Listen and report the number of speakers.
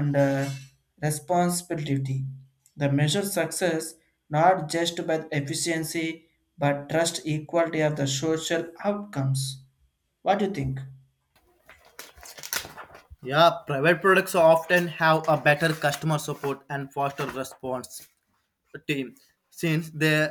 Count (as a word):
two